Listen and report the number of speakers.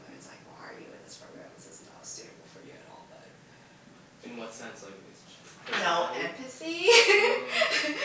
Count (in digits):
2